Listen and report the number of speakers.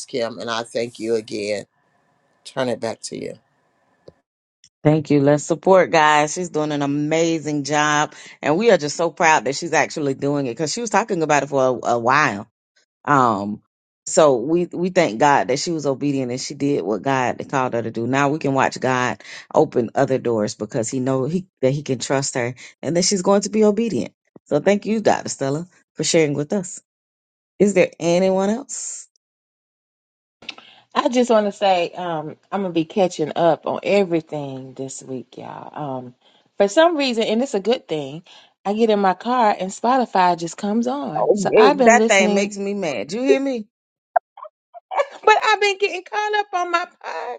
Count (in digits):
3